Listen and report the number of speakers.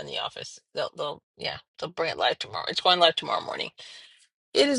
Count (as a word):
one